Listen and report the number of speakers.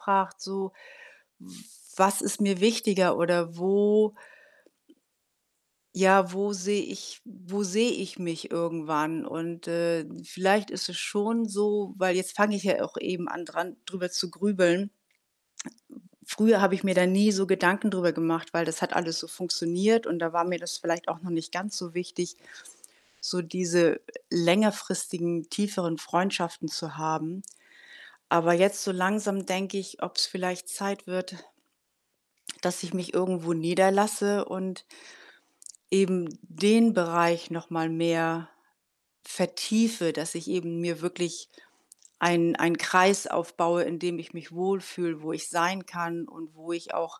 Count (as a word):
one